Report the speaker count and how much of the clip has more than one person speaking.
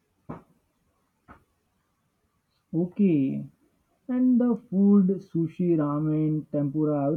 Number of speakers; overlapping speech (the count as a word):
one, no overlap